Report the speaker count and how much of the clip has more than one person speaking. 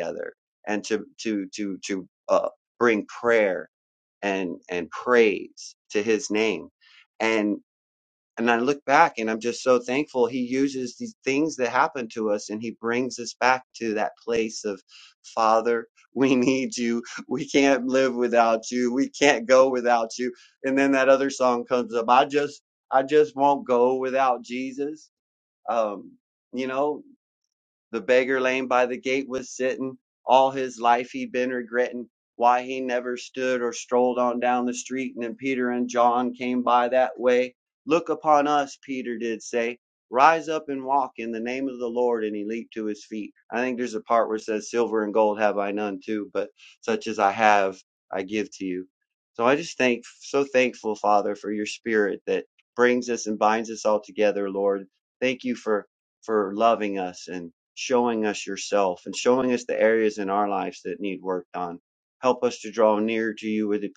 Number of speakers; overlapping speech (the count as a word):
one, no overlap